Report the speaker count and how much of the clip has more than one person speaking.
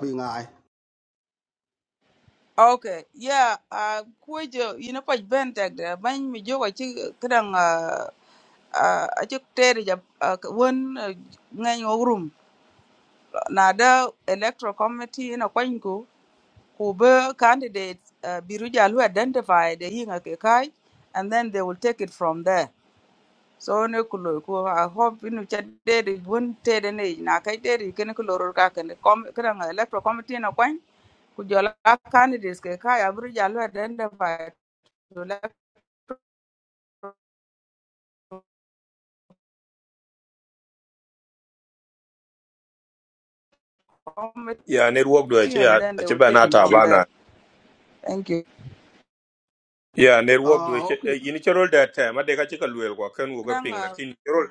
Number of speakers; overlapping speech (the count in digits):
3, about 5%